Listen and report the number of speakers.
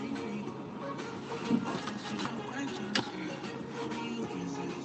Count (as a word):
zero